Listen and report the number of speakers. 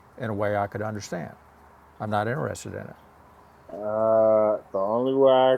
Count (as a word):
two